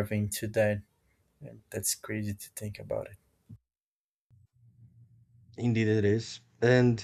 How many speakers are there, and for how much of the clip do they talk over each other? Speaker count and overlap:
2, no overlap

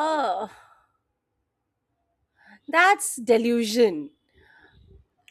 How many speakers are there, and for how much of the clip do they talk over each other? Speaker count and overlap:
1, no overlap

